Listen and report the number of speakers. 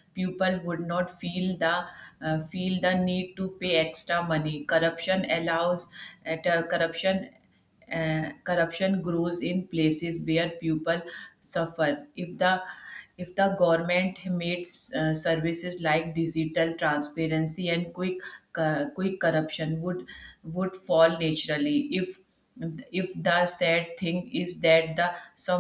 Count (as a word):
one